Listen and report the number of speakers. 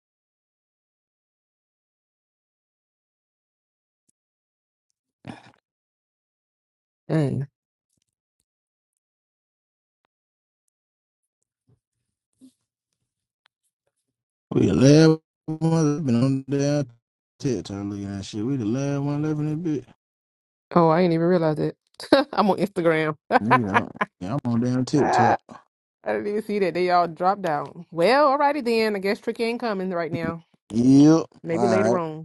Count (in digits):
2